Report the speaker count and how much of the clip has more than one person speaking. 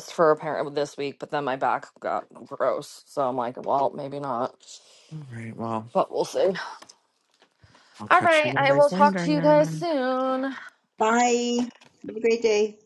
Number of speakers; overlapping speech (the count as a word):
three, about 14%